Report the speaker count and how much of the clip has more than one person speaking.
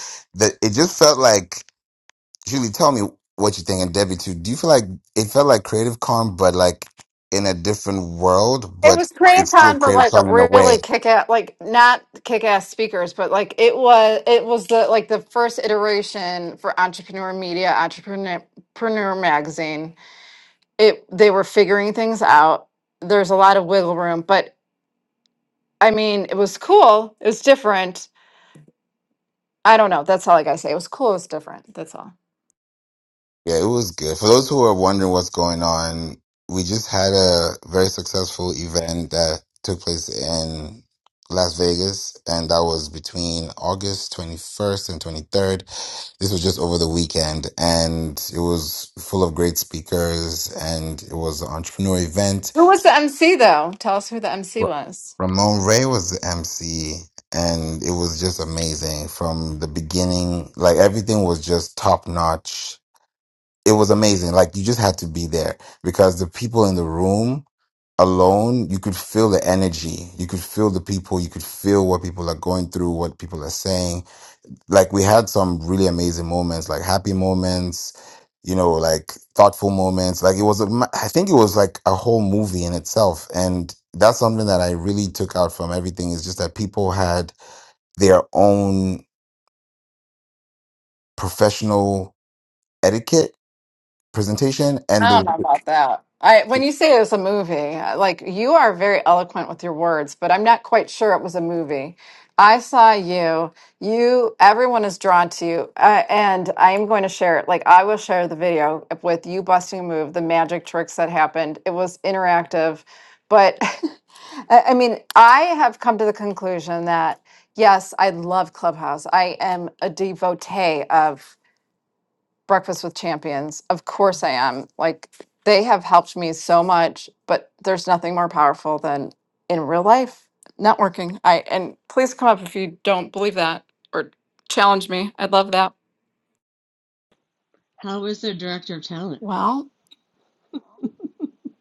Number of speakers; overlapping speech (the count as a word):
three, about 1%